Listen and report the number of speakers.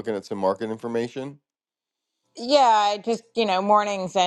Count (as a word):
two